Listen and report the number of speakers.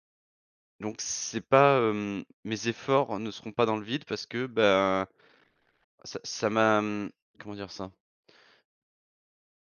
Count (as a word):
one